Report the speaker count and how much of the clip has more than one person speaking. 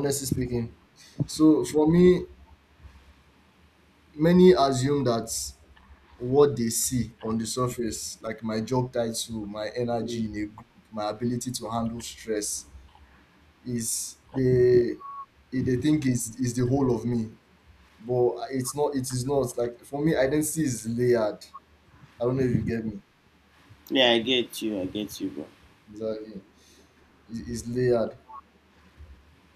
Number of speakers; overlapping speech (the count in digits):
2, about 1%